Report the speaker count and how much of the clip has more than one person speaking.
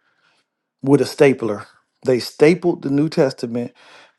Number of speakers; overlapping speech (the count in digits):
1, no overlap